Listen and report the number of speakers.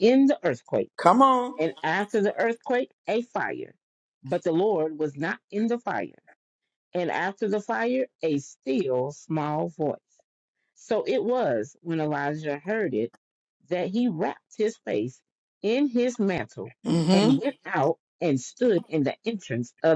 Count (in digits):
2